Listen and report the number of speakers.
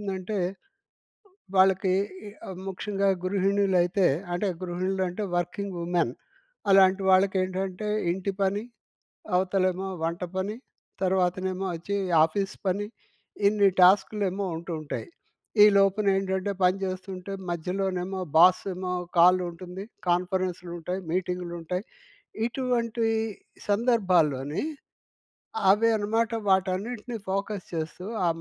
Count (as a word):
one